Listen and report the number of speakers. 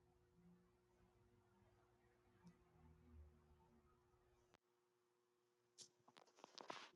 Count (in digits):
0